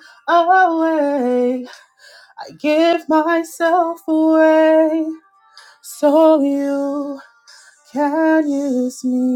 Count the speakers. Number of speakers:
one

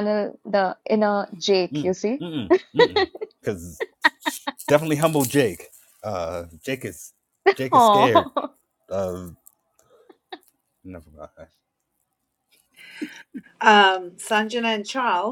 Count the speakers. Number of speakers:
three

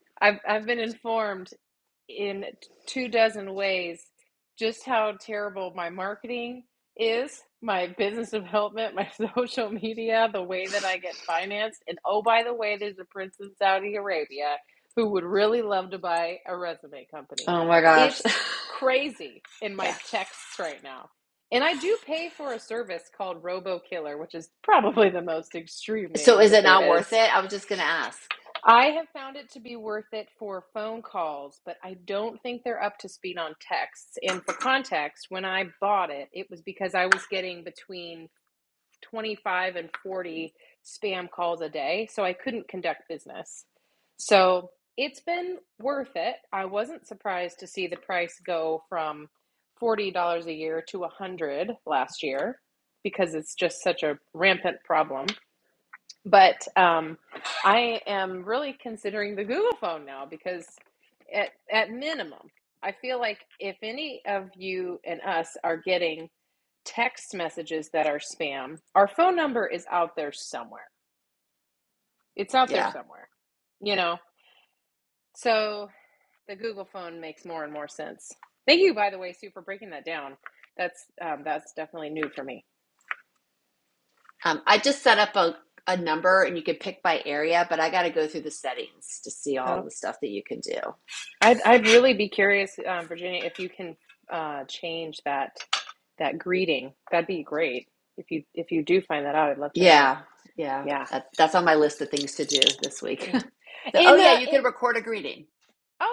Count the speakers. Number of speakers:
two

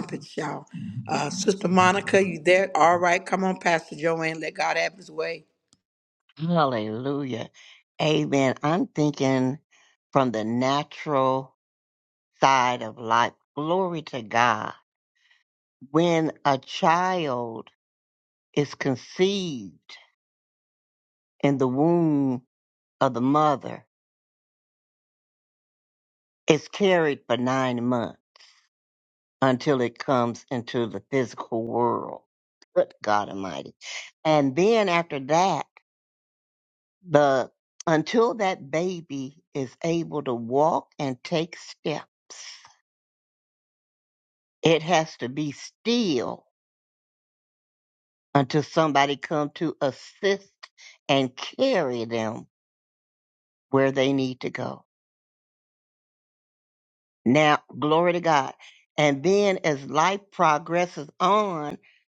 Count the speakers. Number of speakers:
two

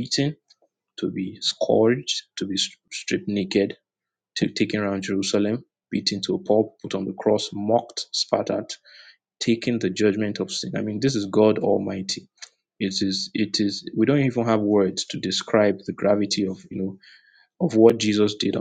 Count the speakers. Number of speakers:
one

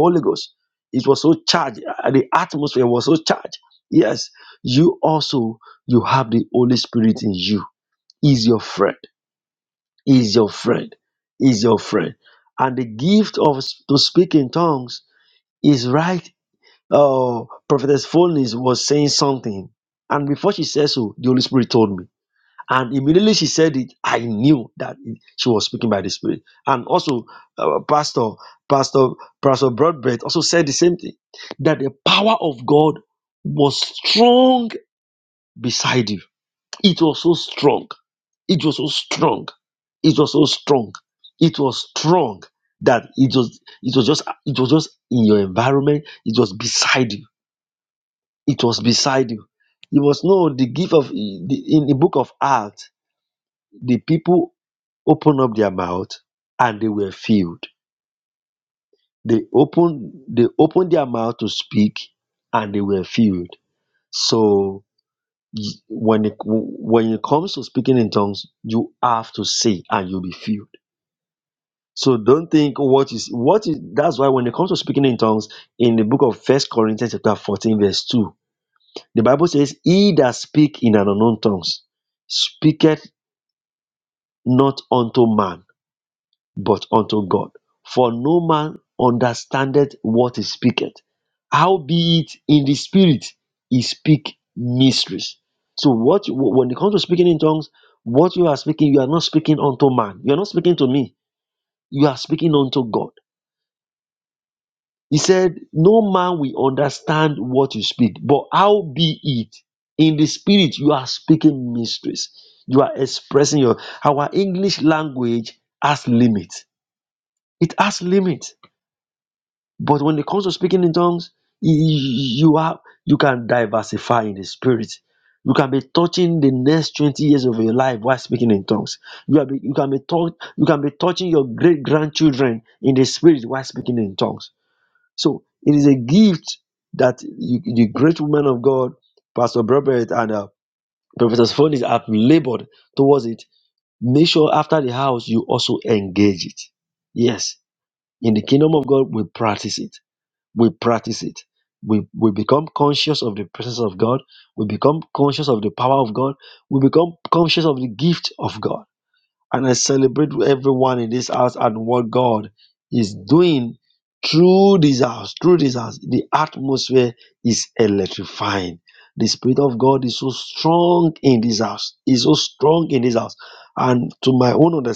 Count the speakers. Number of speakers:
one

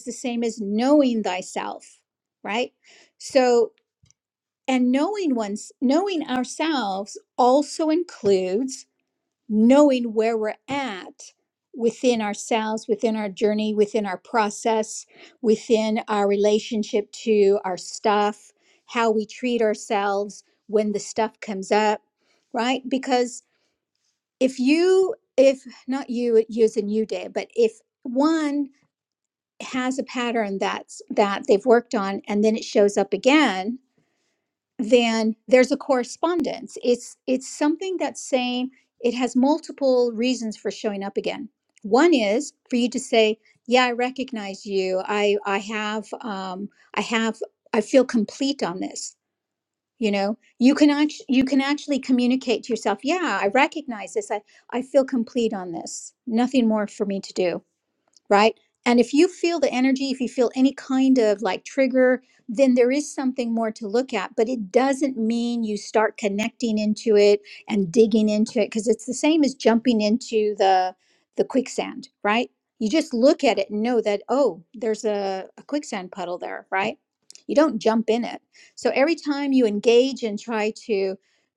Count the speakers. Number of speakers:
one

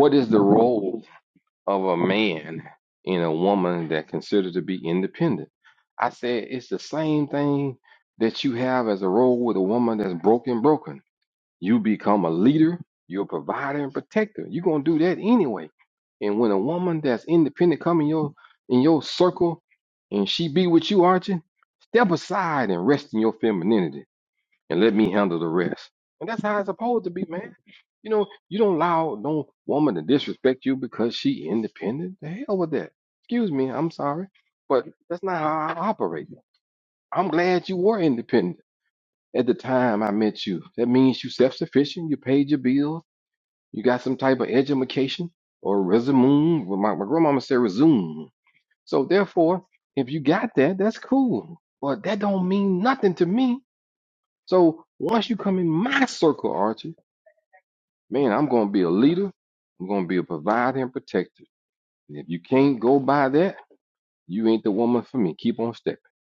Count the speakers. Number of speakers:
one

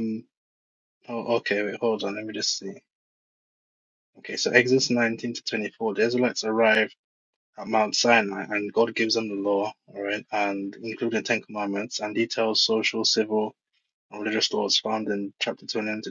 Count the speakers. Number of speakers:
one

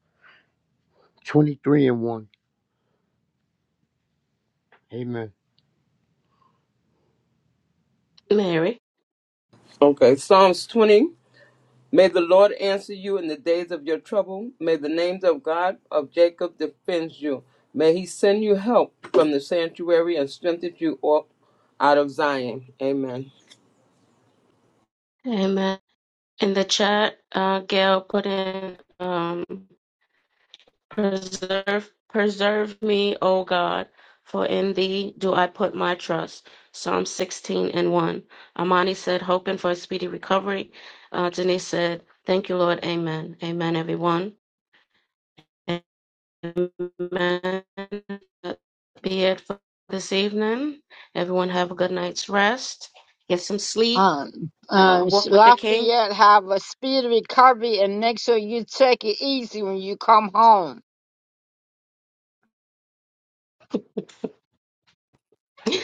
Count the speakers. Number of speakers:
four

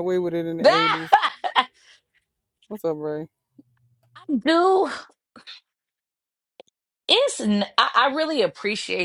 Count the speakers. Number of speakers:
two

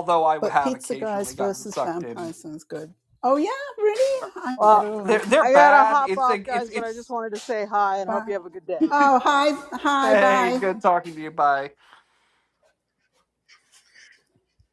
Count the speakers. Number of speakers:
three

